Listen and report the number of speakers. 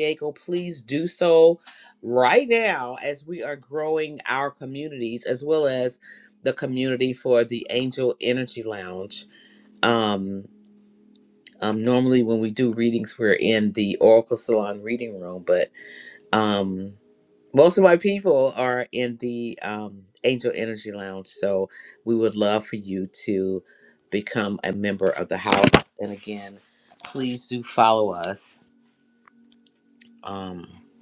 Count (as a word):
one